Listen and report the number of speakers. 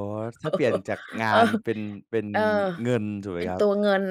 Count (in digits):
2